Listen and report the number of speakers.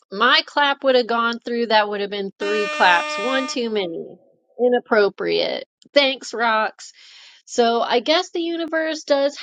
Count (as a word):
one